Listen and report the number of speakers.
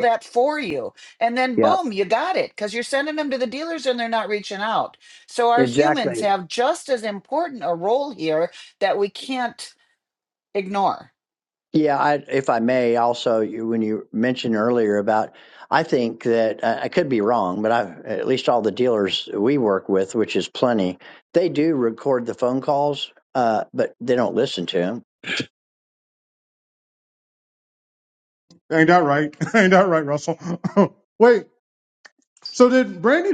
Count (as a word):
three